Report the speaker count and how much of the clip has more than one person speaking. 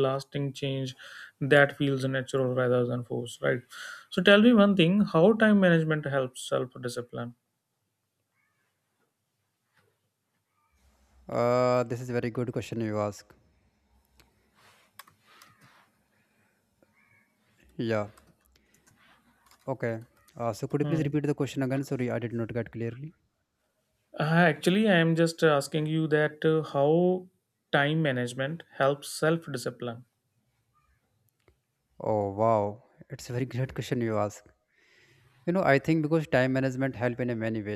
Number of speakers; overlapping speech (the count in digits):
2, no overlap